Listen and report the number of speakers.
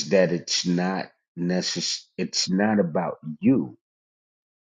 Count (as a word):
one